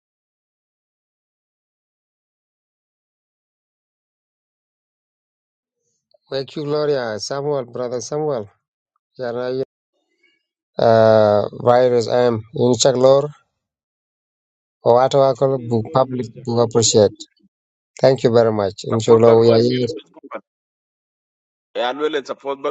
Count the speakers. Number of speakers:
two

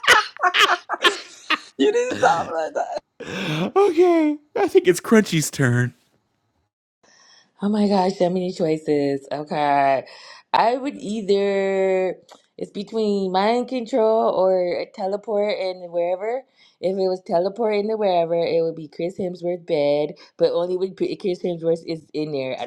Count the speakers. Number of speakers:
three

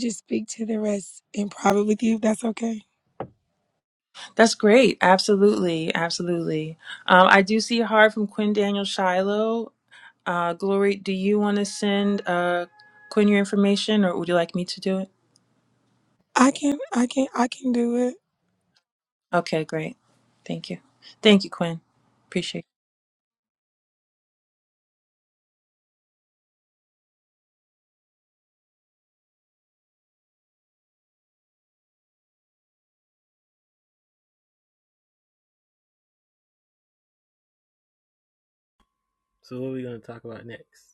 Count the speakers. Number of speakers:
three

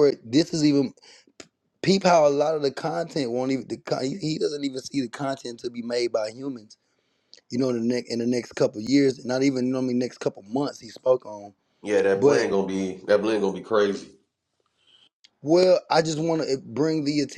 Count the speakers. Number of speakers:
two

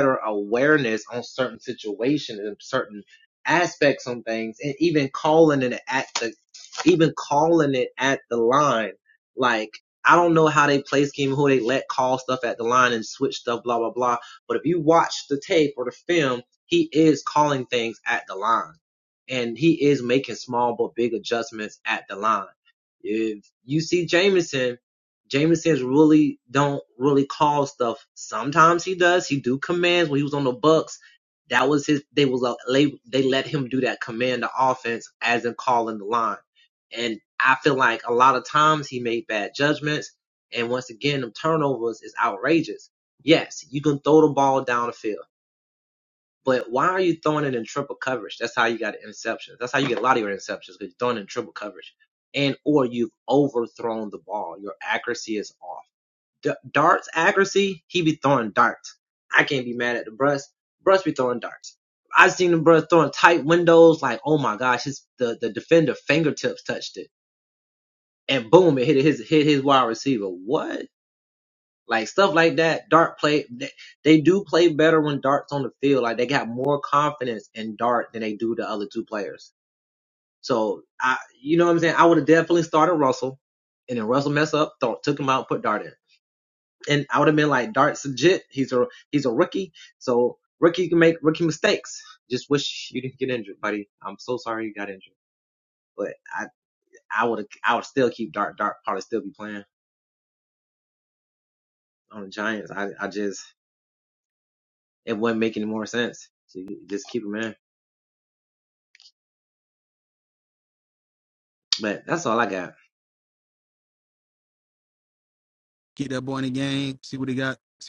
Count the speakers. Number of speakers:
two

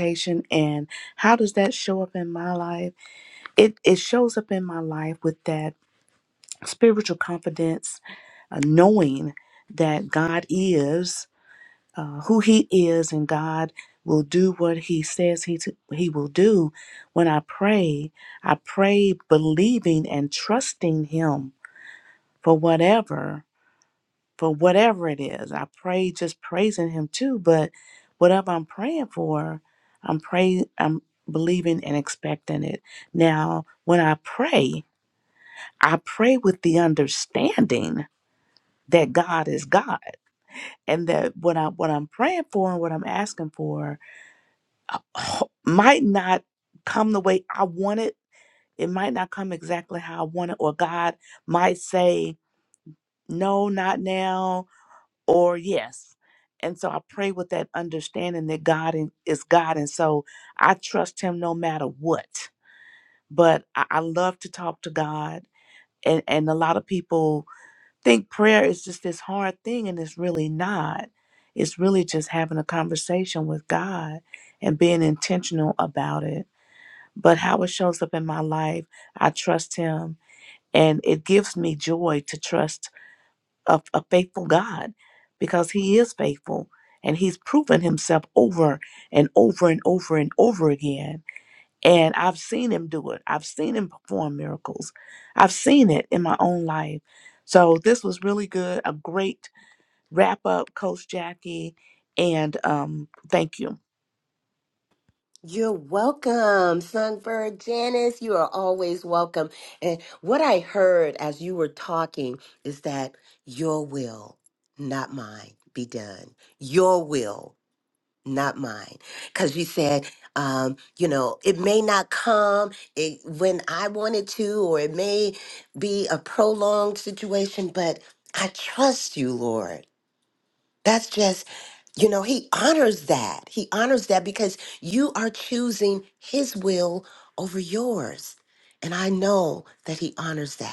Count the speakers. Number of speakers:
two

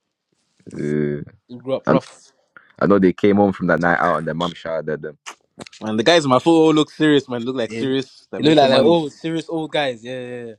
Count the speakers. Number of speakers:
three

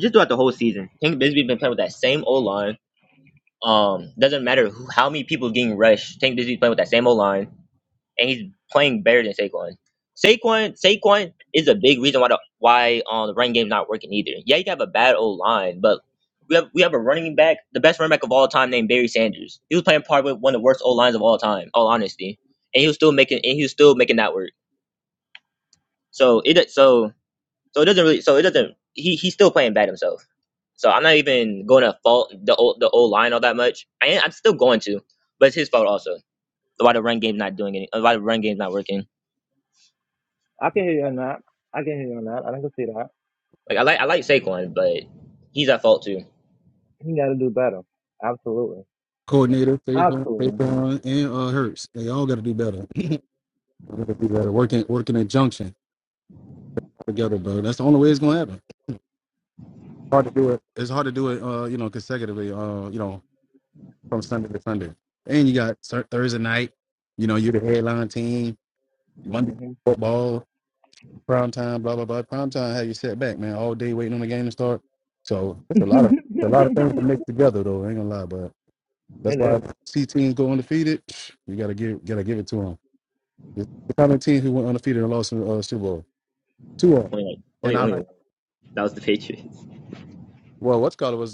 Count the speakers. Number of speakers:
three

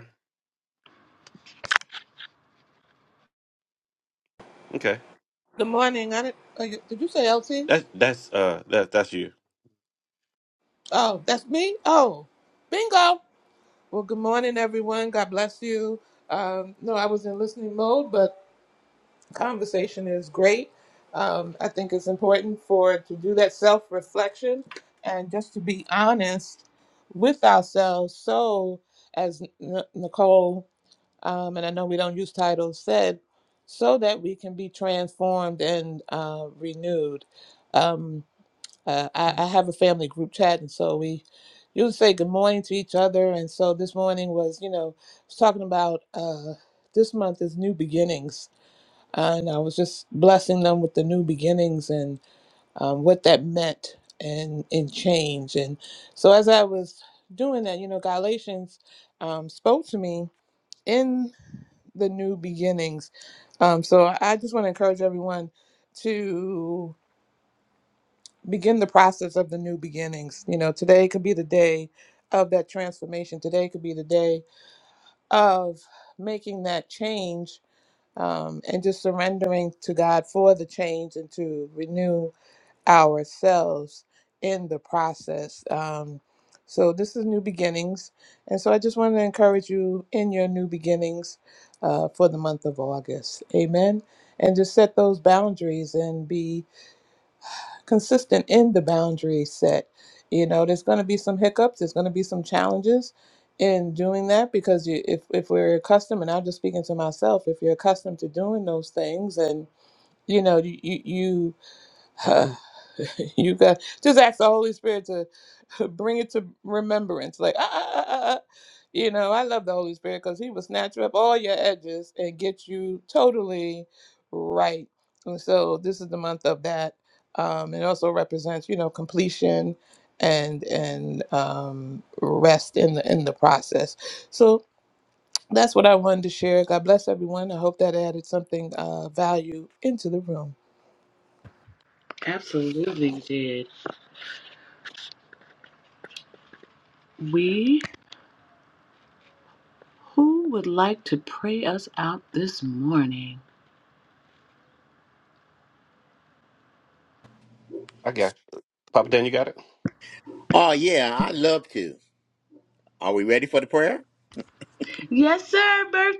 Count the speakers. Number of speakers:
four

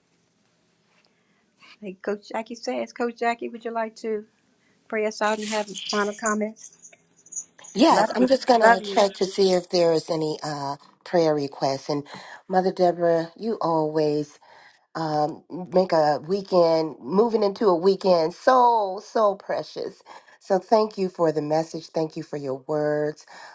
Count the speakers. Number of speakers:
two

